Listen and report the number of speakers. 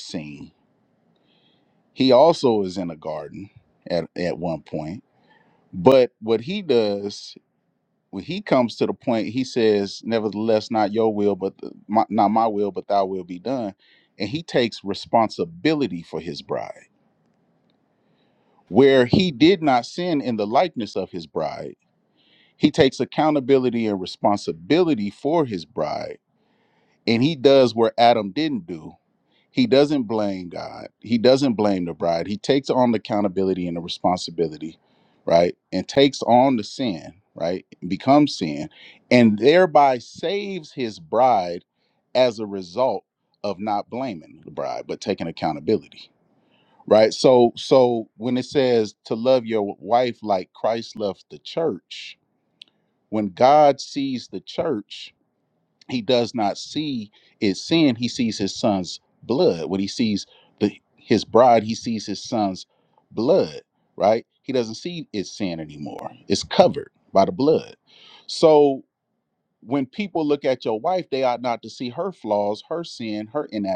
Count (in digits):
1